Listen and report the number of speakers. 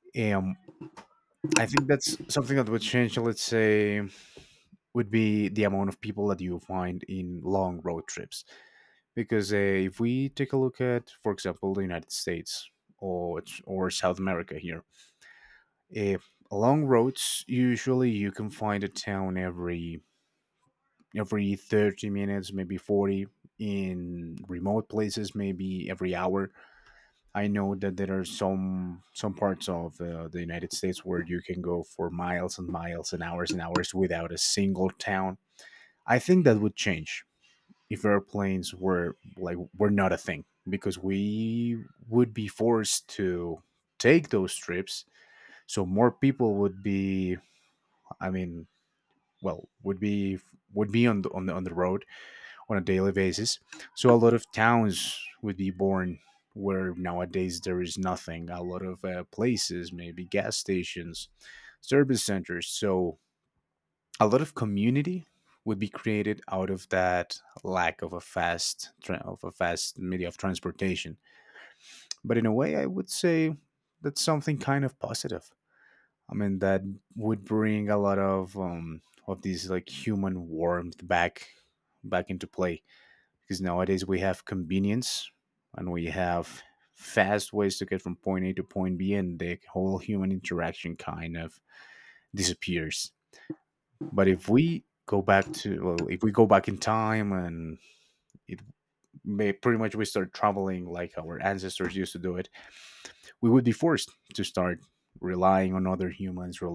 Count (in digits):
1